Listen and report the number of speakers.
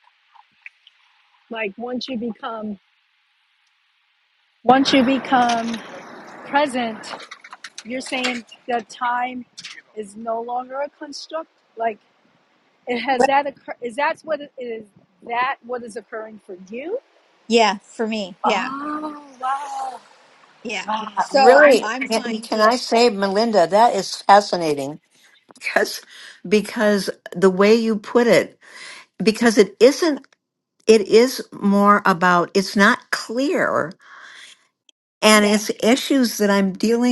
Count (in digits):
3